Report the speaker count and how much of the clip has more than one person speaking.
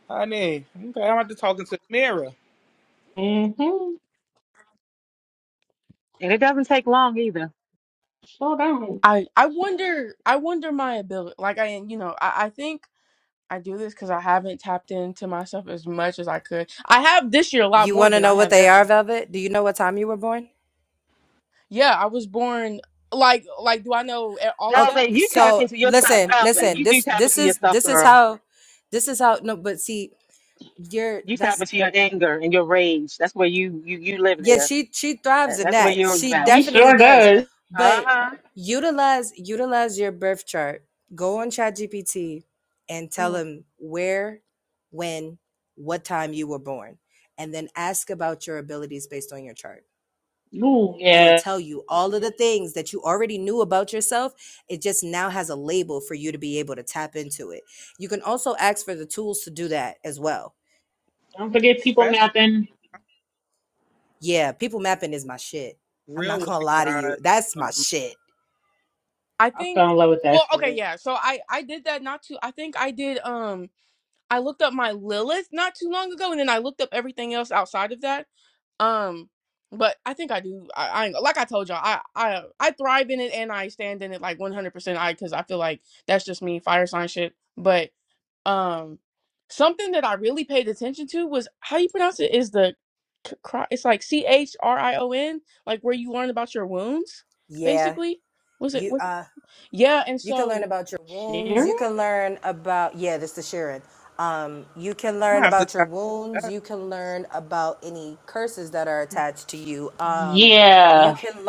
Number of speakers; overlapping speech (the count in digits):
5, about 11%